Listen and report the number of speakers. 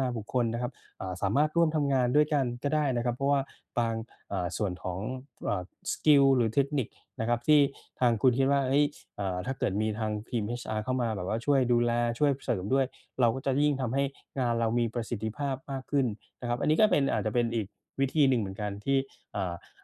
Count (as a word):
one